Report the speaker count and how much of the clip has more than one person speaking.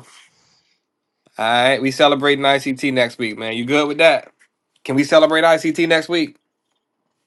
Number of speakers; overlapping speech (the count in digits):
1, no overlap